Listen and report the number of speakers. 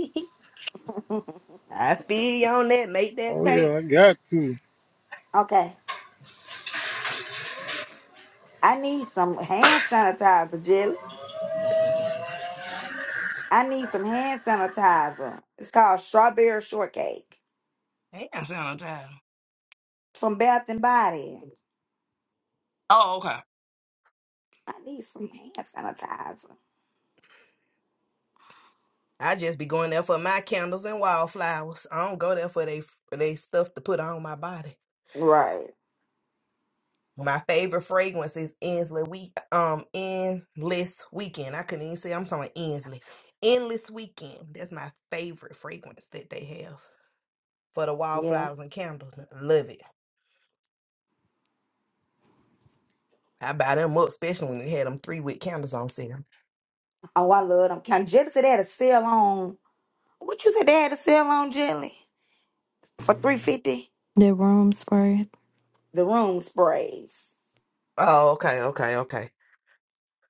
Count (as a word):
four